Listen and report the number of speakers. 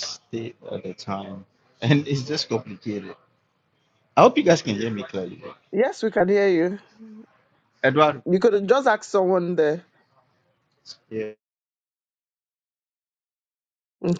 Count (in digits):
2